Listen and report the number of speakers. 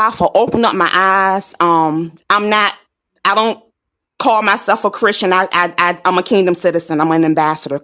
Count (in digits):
1